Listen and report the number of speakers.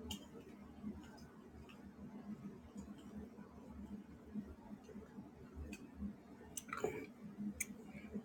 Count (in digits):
0